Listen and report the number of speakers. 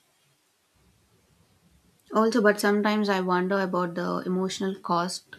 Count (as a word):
one